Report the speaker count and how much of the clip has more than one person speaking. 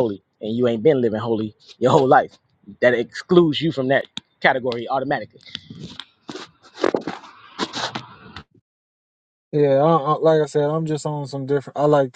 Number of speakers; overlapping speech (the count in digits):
2, no overlap